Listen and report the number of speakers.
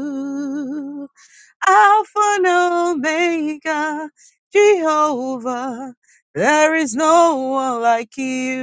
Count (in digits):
1